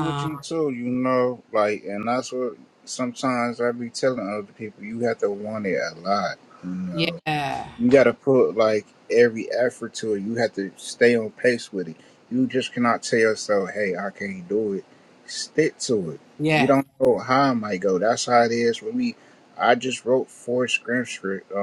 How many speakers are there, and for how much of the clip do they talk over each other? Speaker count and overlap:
two, about 3%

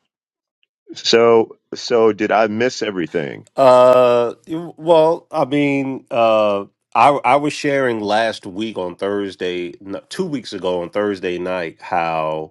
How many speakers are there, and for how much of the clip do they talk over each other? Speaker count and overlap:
two, no overlap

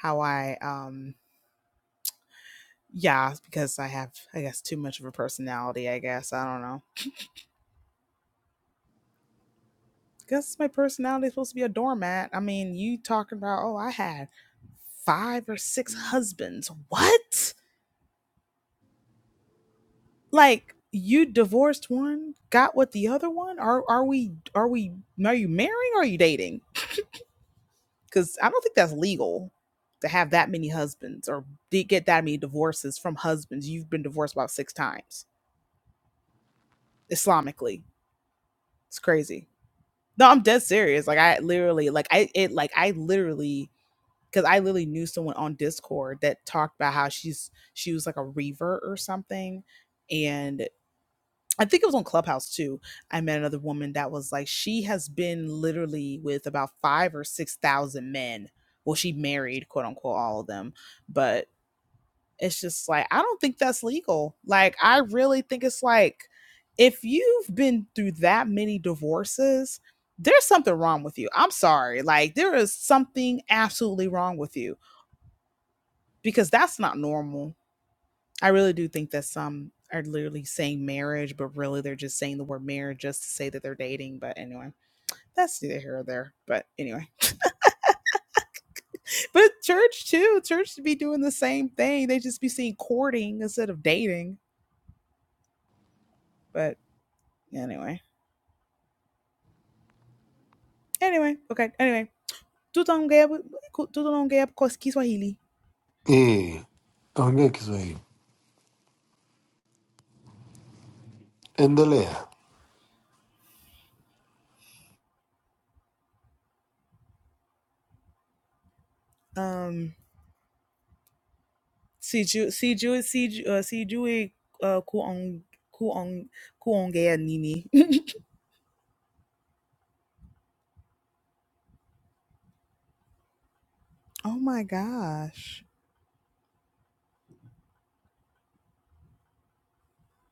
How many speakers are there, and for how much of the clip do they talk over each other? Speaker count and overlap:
two, no overlap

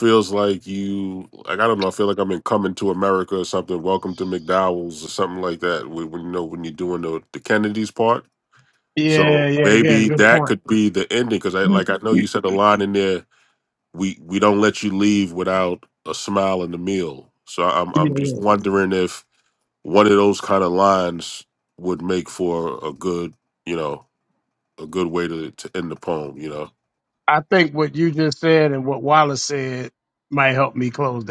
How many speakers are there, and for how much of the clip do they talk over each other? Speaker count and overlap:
two, about 6%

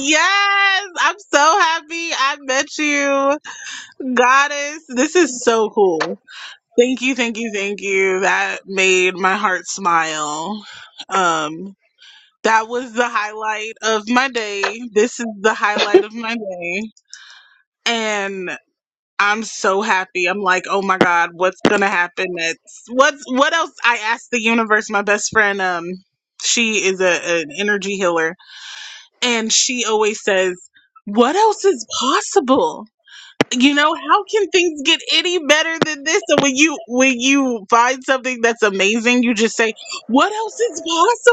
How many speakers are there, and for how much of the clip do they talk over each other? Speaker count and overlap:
one, no overlap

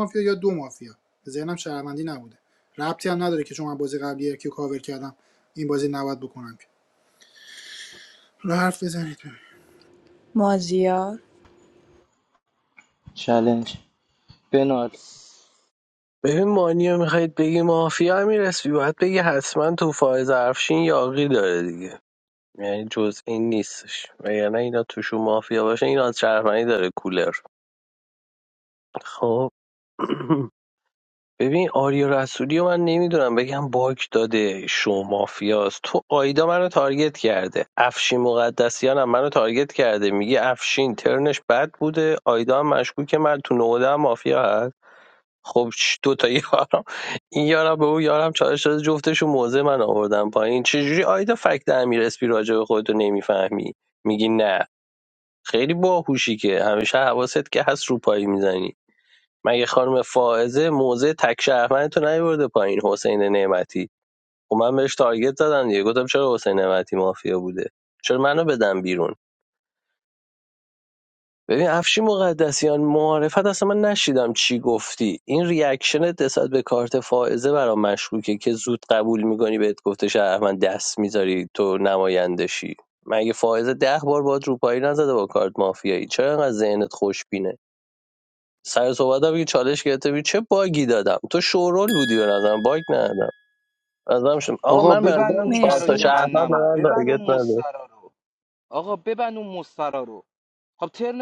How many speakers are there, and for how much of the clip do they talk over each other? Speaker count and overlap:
four, about 3%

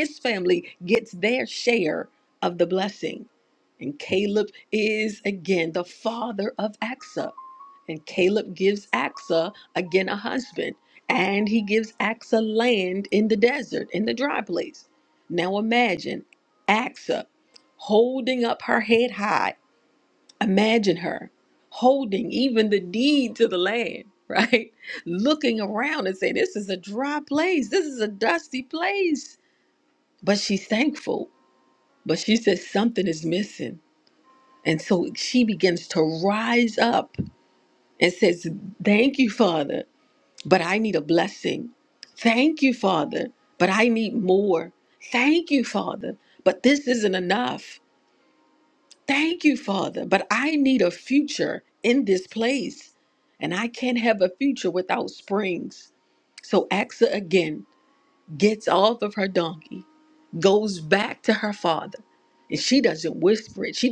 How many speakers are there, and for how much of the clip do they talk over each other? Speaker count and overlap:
one, no overlap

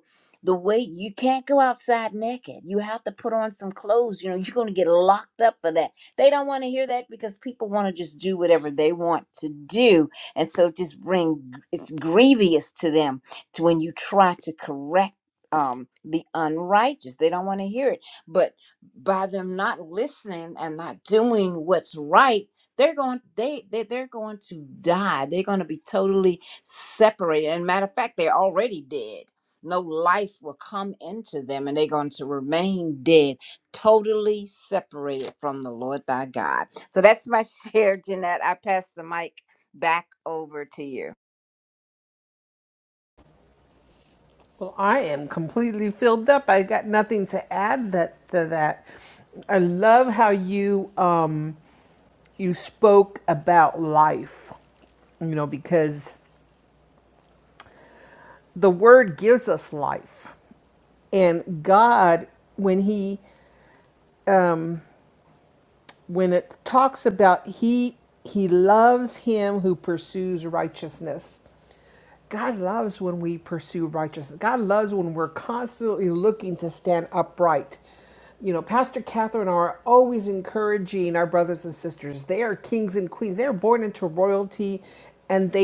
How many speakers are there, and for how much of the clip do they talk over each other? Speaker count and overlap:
two, no overlap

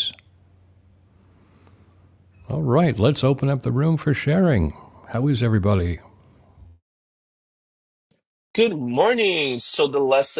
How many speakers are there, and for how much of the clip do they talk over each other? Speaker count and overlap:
two, no overlap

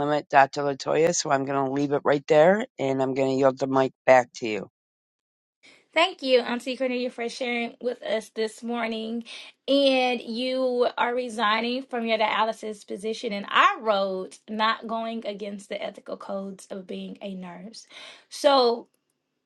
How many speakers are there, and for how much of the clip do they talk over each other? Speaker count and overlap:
two, no overlap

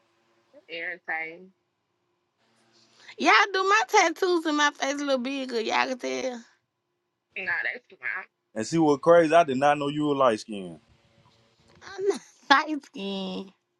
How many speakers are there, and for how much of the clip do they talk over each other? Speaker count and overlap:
three, no overlap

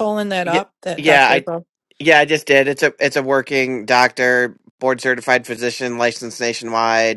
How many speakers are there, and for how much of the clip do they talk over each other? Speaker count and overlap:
two, about 9%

